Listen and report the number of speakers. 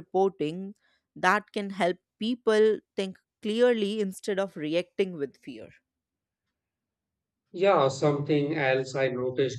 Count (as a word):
two